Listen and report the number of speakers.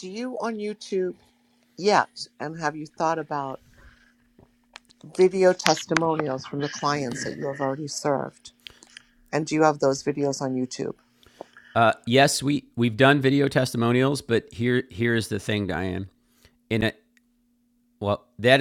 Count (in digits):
2